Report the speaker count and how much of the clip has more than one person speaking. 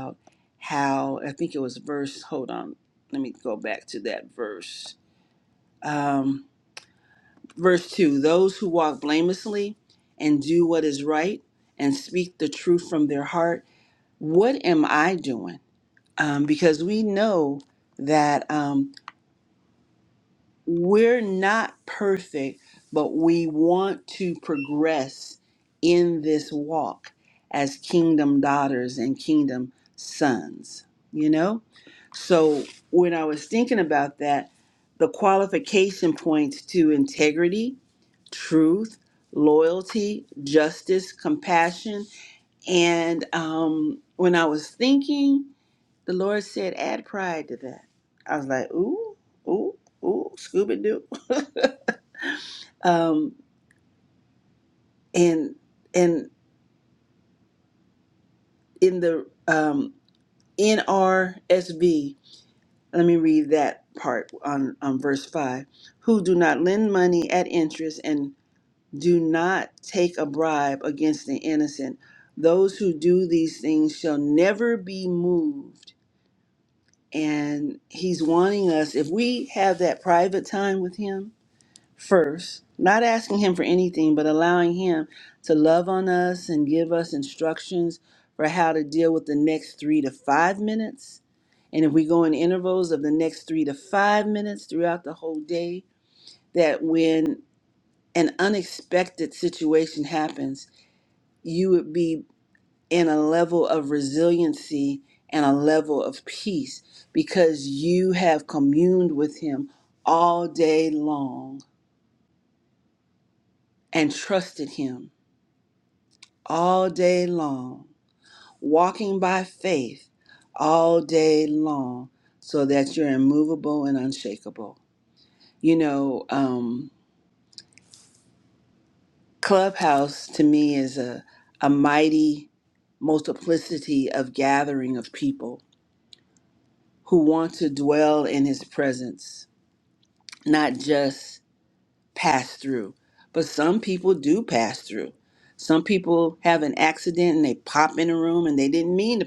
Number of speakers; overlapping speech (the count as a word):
one, no overlap